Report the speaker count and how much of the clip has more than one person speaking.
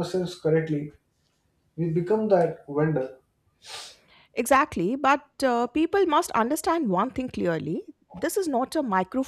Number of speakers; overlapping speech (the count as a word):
two, no overlap